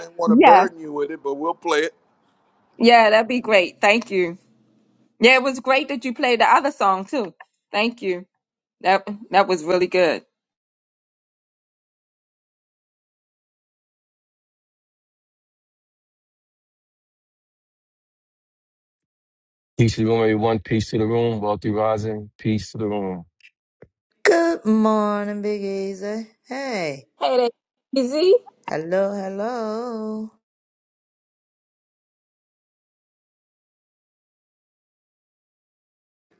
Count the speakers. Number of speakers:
4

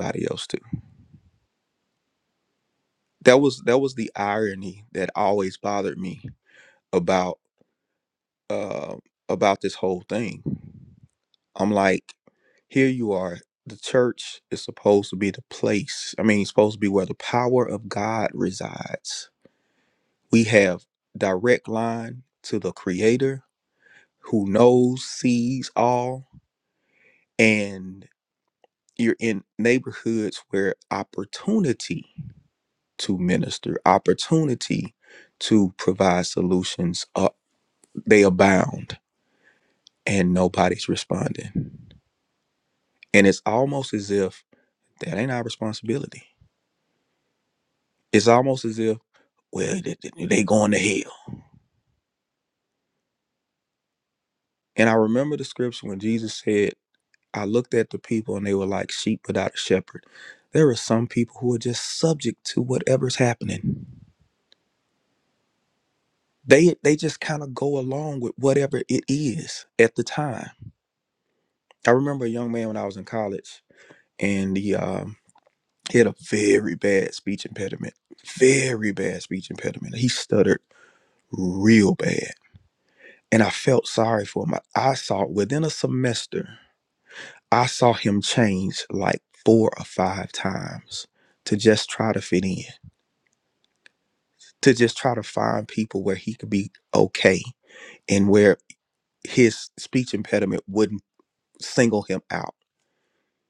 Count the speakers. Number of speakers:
1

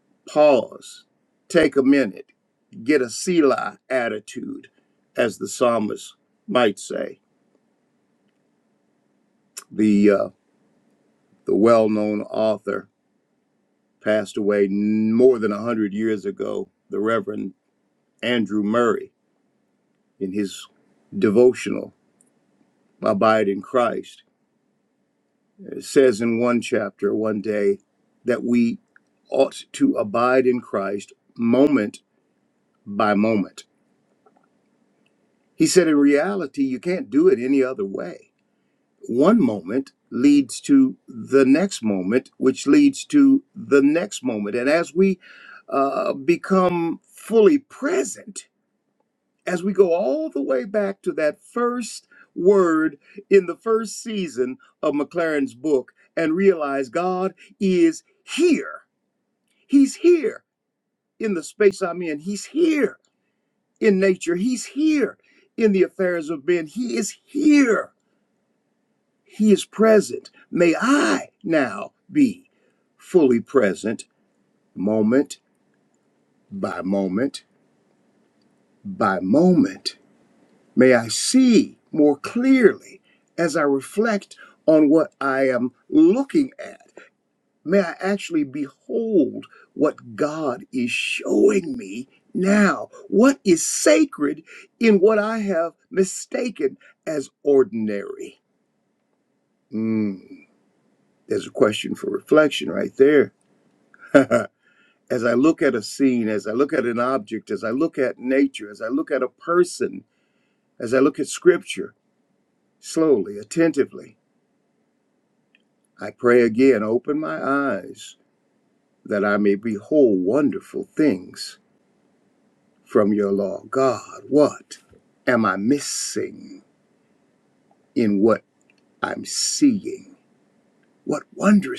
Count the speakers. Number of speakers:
1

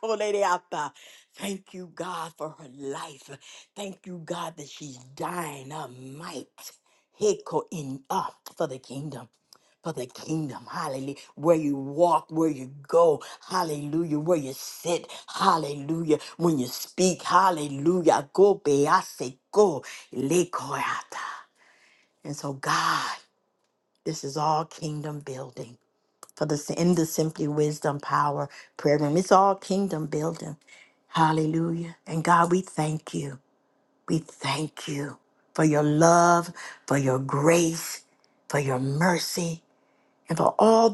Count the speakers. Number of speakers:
1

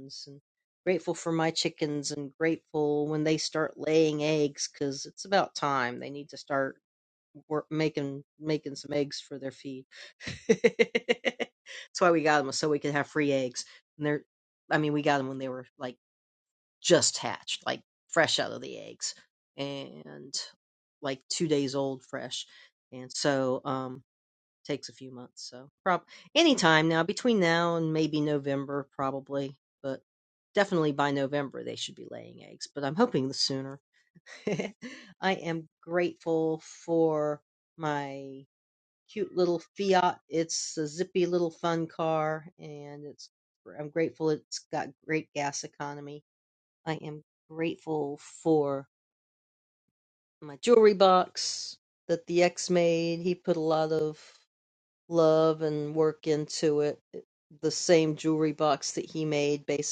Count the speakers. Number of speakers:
1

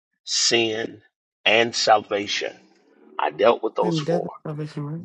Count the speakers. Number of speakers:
2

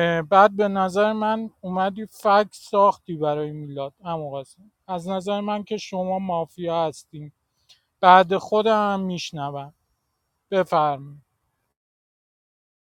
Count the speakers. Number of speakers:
1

